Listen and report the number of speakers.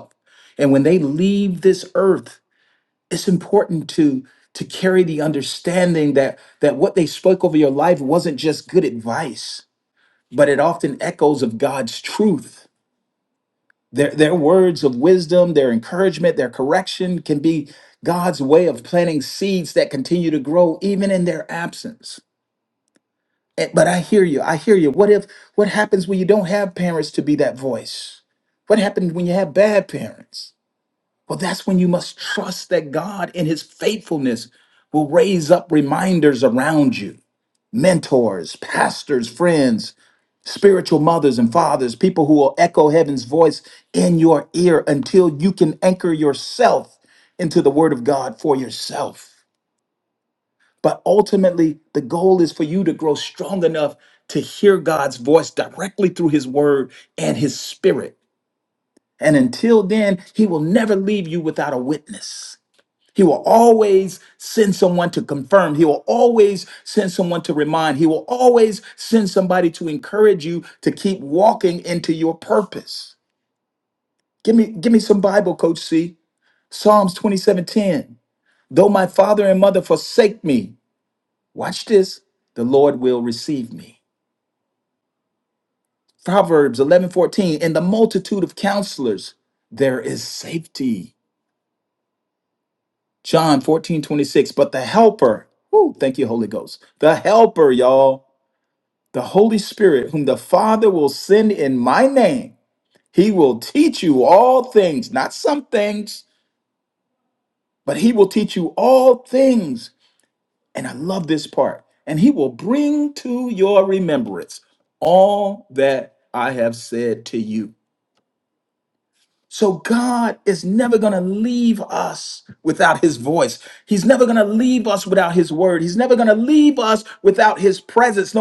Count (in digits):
1